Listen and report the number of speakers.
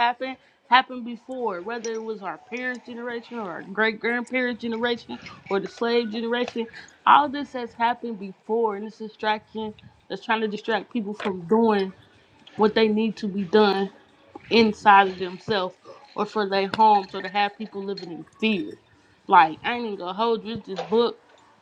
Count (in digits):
1